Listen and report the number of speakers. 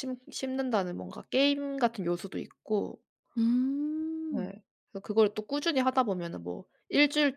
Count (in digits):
2